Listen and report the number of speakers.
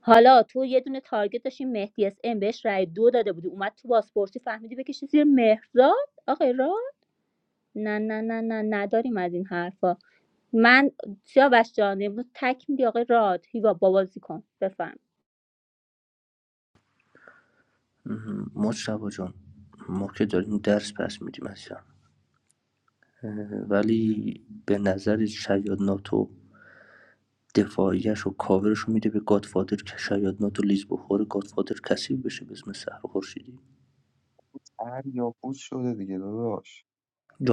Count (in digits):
3